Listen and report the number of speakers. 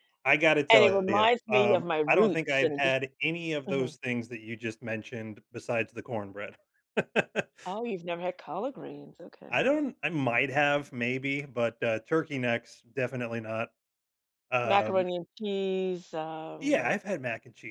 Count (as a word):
two